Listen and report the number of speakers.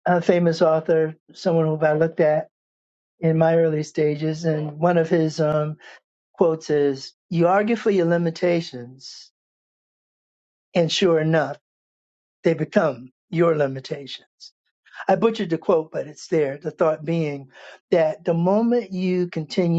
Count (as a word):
one